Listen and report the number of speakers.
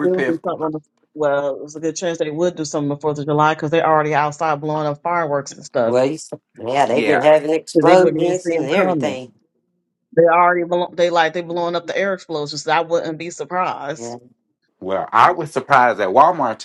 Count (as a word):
three